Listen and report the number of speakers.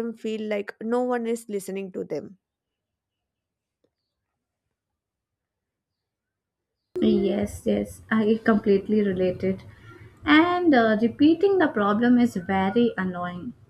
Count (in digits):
2